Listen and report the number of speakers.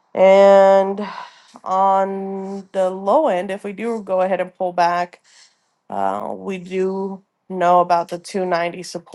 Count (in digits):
1